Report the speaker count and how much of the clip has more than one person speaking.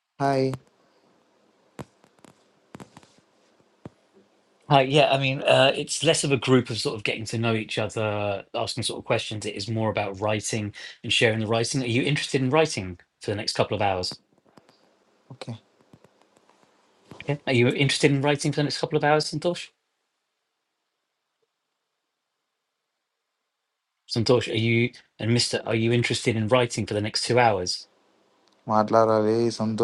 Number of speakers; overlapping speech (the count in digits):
2, no overlap